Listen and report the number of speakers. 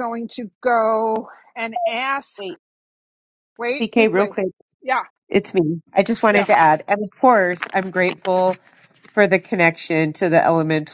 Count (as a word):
two